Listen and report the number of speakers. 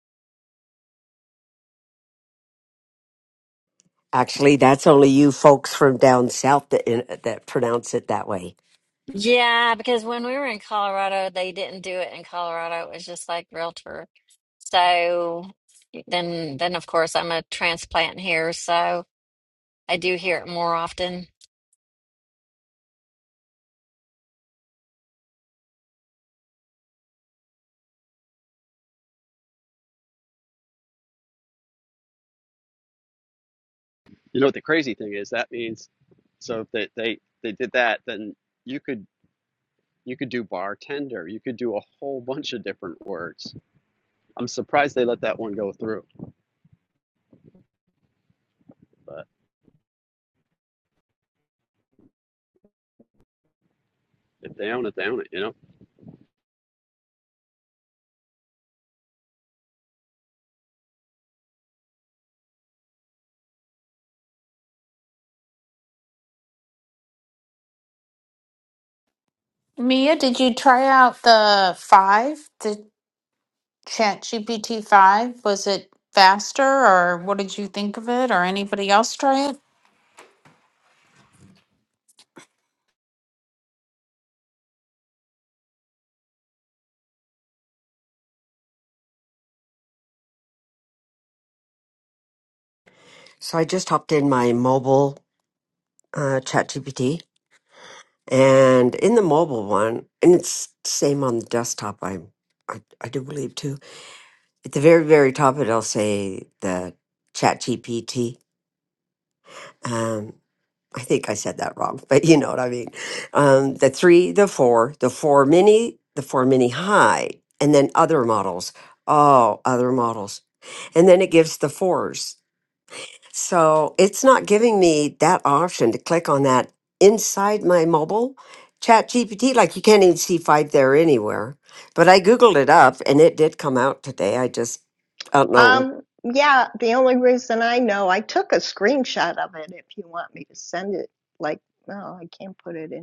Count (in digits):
5